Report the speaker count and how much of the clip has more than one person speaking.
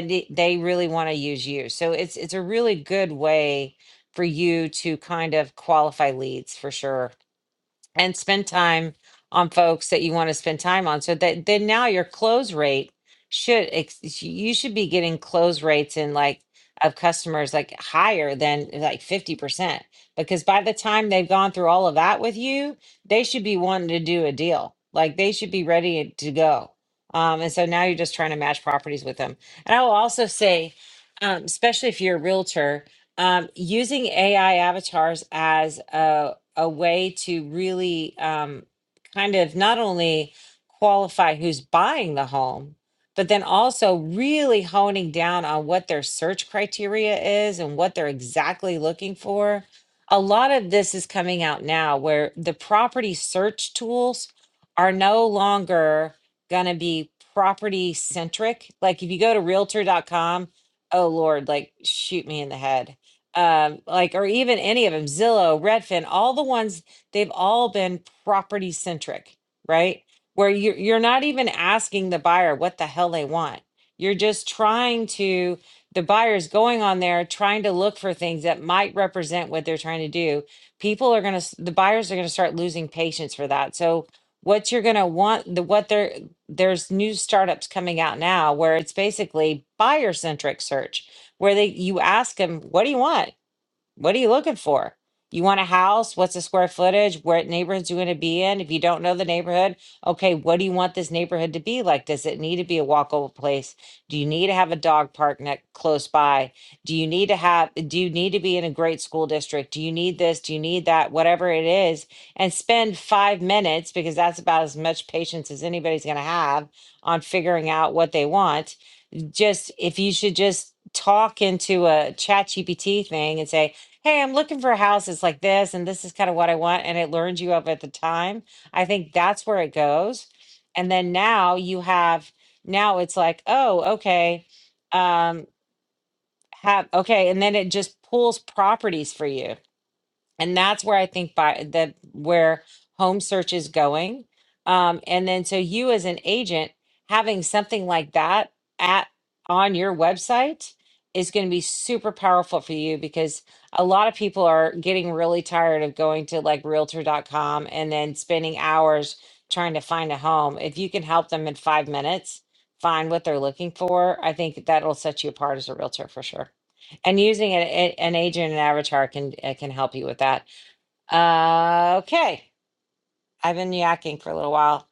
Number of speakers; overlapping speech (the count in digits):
1, no overlap